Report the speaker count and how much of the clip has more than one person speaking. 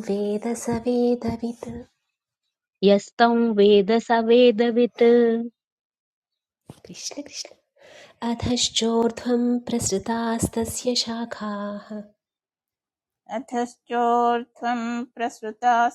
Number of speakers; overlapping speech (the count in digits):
3, no overlap